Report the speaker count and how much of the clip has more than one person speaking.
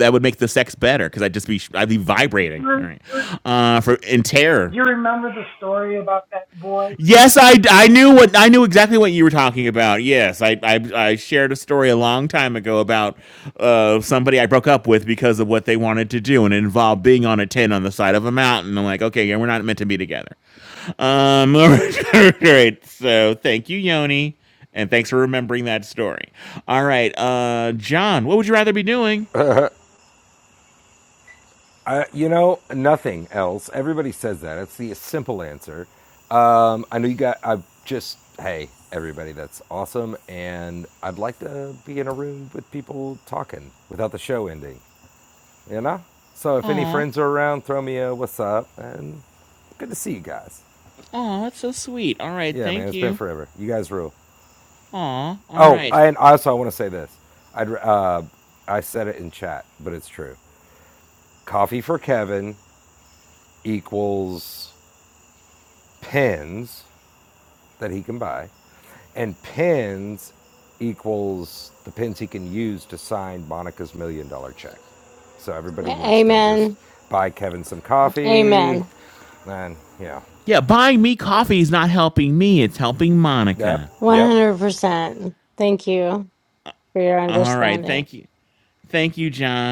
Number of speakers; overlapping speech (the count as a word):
four, about 5%